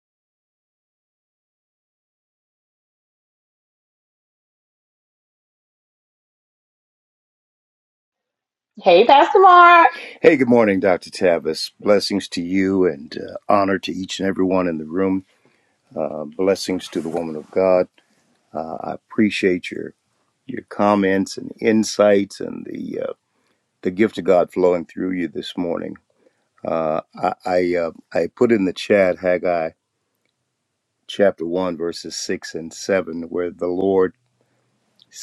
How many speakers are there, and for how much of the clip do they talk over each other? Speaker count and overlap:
2, no overlap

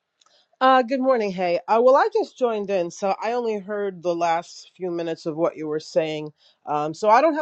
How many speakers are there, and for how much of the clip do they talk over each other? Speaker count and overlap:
1, no overlap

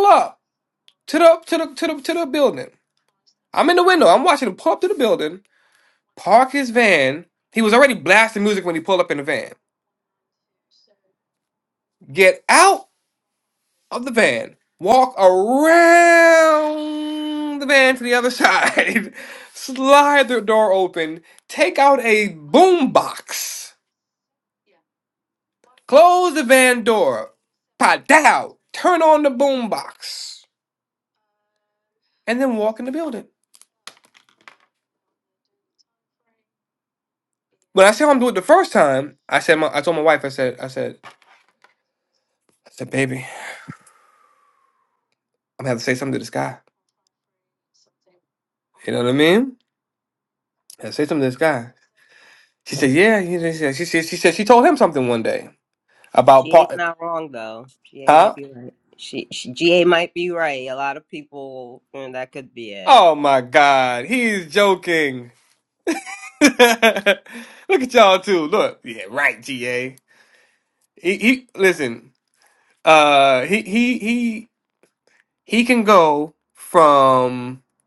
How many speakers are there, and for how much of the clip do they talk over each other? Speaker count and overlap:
2, about 1%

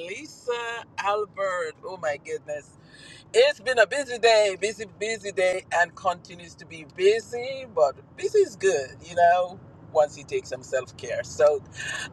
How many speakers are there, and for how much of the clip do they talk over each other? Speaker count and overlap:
1, no overlap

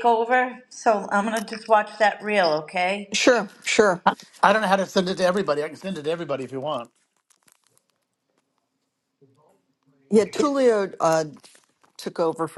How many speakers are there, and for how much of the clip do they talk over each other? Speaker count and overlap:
3, no overlap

